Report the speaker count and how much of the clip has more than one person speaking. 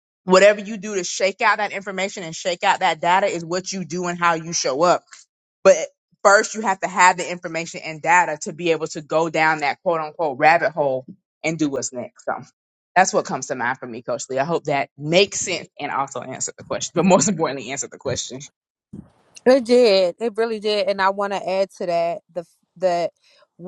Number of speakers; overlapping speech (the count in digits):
2, no overlap